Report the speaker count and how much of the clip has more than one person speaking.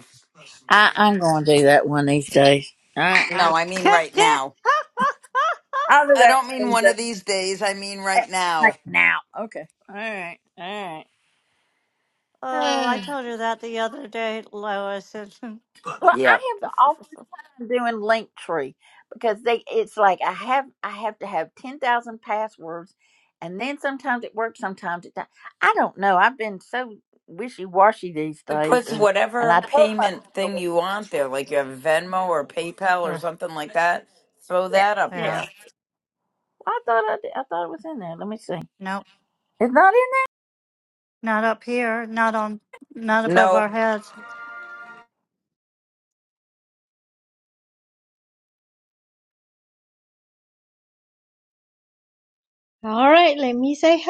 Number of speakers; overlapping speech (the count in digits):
4, about 9%